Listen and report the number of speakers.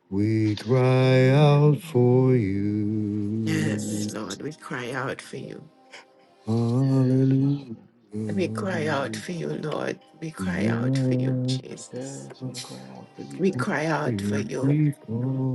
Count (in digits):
3